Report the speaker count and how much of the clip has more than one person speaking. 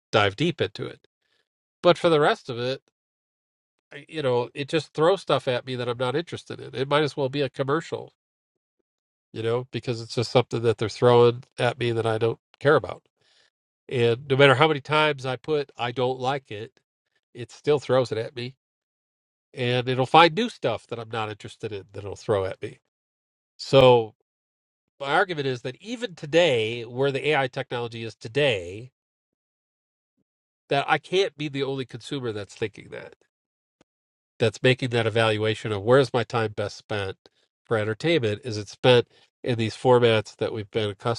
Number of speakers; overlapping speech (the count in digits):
1, no overlap